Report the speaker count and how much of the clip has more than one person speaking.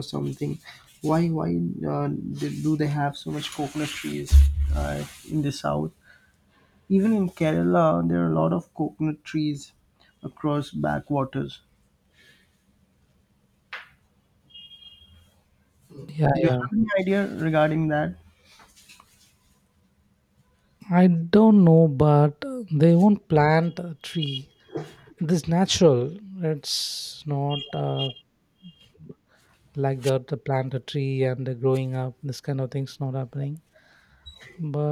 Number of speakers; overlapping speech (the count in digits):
2, about 1%